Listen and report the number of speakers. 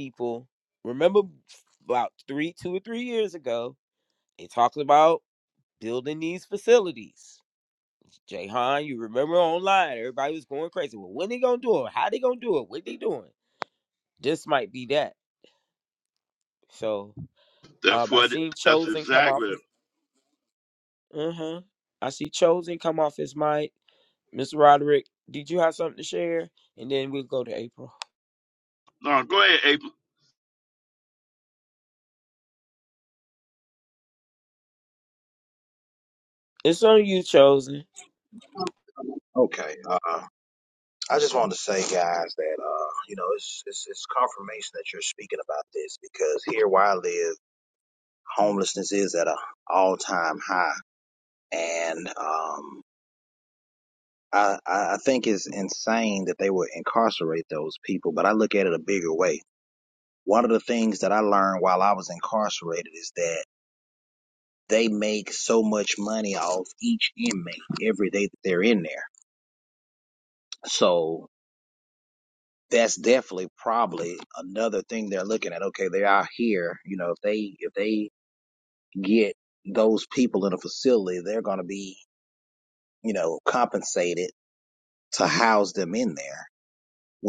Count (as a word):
three